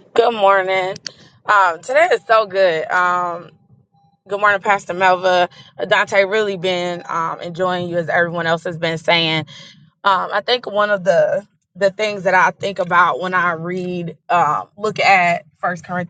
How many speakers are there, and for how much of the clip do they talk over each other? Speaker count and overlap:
1, no overlap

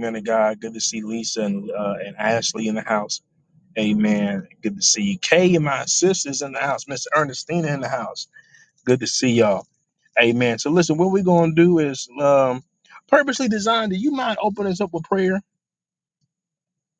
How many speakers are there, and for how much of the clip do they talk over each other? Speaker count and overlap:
1, no overlap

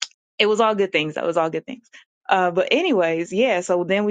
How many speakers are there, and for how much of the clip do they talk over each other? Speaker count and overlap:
1, no overlap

